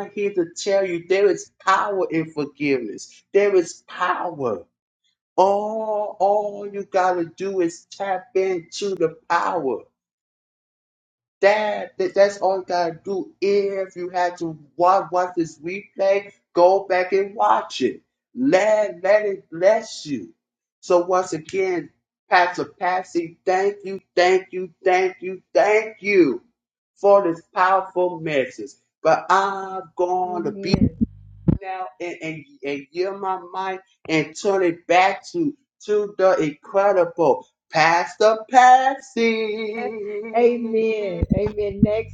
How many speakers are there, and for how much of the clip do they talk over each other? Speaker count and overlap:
2, about 1%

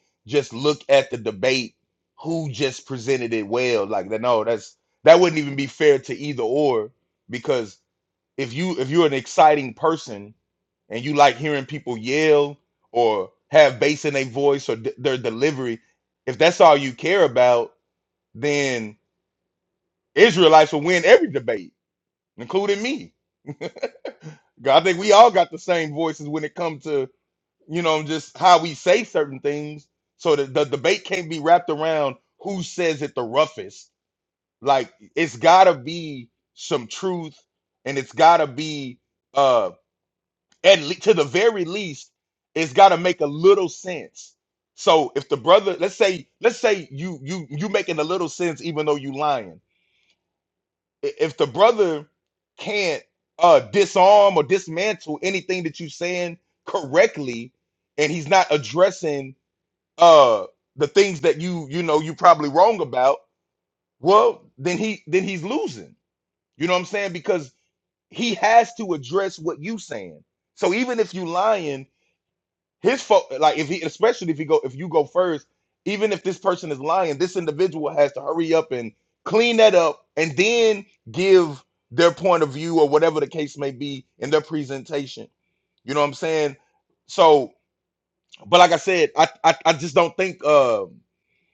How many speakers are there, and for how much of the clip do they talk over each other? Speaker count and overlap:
1, no overlap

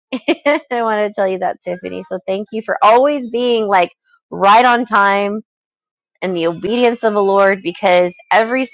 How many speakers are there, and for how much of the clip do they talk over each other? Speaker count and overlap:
1, no overlap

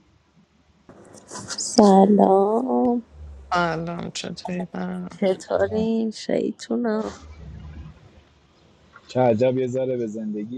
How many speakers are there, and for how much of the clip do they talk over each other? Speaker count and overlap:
3, no overlap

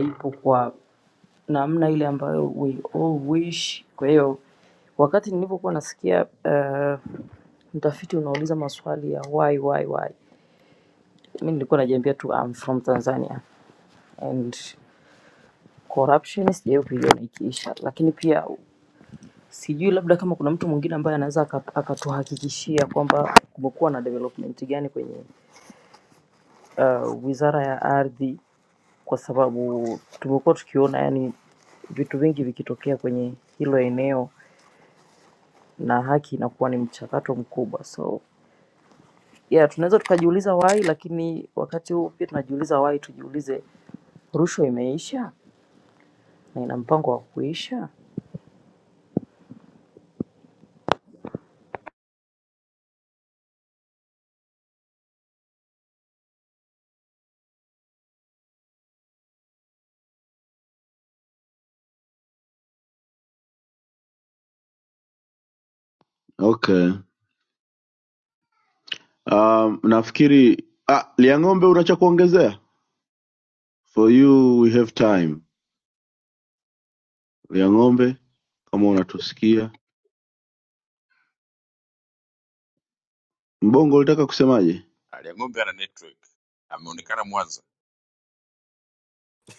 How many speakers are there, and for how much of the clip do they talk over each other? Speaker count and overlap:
3, no overlap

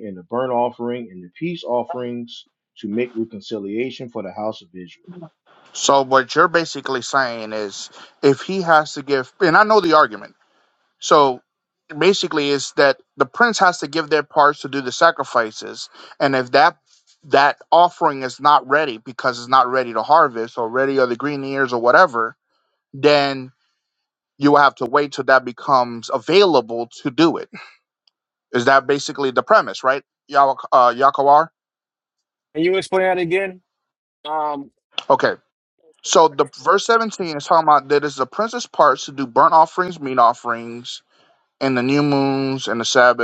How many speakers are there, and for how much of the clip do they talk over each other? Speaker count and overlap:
3, no overlap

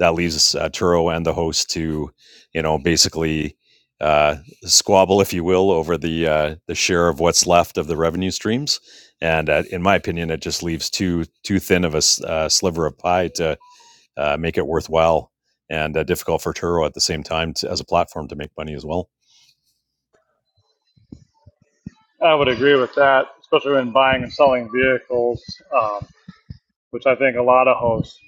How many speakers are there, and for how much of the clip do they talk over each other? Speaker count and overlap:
2, no overlap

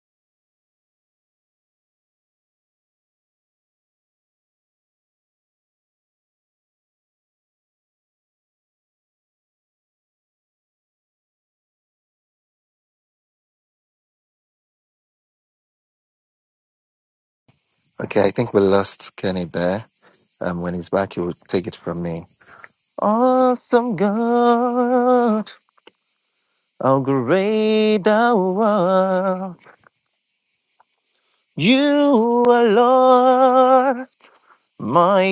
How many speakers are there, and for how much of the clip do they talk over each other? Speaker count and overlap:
1, no overlap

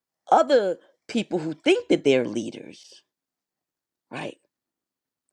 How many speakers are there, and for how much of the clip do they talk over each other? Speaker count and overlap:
1, no overlap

